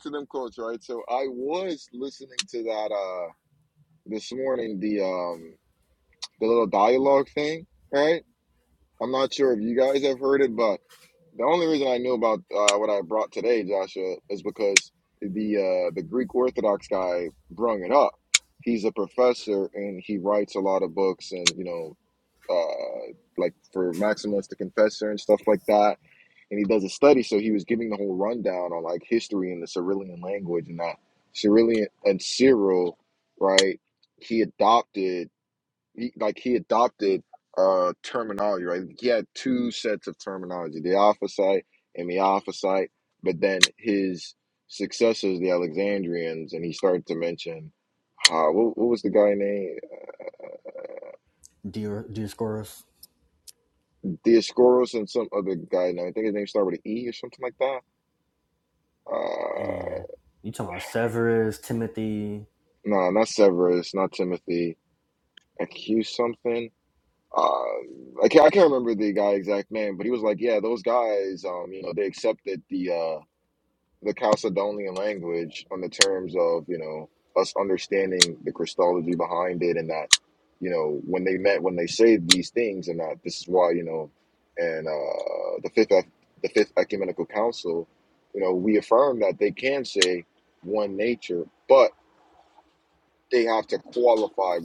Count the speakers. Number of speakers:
2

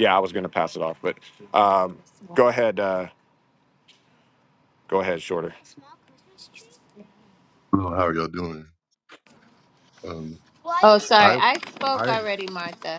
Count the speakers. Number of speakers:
3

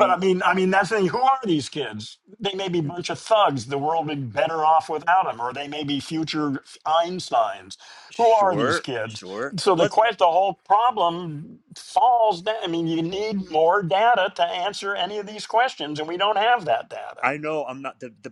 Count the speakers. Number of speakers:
2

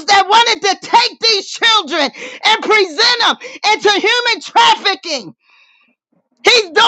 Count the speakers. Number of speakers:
1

